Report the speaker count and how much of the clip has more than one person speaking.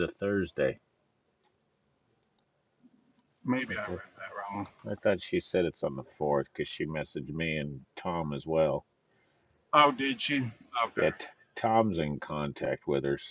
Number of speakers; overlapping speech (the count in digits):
2, about 4%